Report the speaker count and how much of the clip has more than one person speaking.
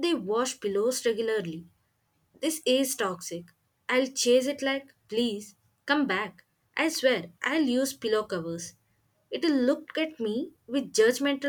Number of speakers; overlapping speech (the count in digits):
1, no overlap